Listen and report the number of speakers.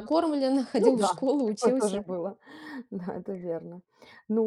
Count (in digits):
2